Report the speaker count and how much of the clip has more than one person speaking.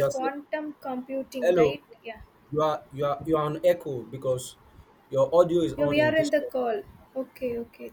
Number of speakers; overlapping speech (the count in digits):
2, about 17%